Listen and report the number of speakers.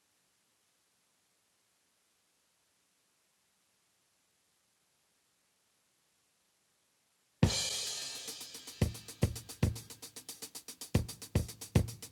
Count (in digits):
0